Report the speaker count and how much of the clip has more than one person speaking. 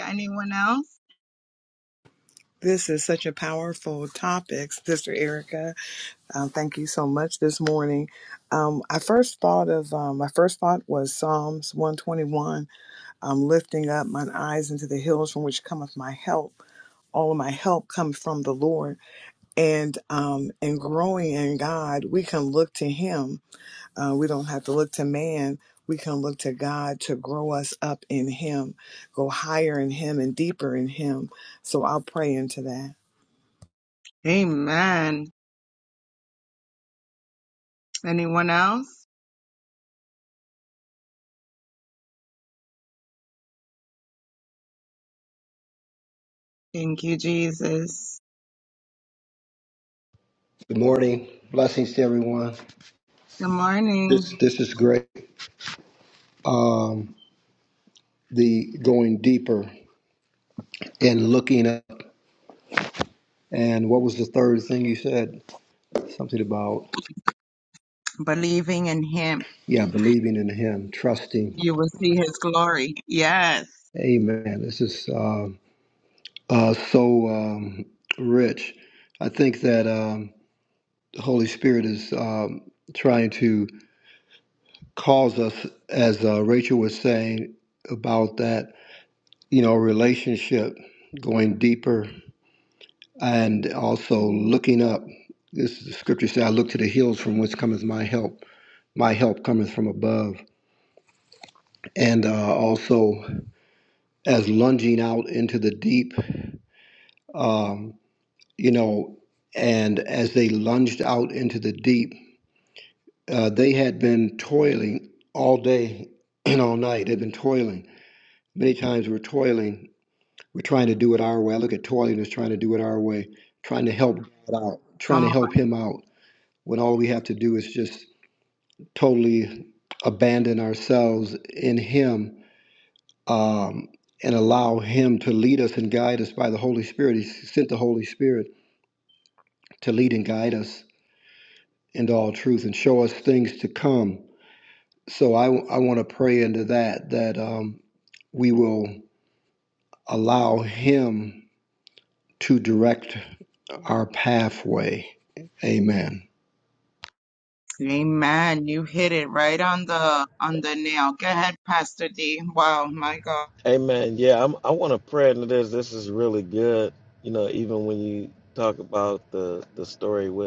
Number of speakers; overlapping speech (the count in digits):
4, under 1%